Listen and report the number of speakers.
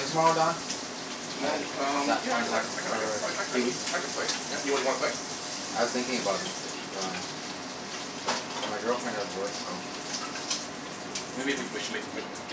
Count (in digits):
2